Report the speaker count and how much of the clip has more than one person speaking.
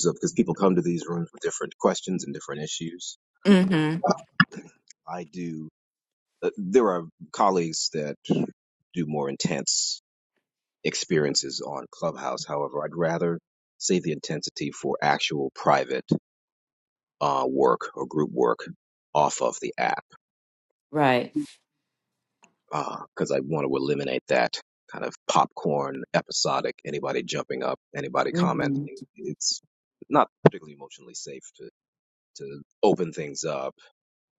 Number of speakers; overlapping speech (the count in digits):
2, about 2%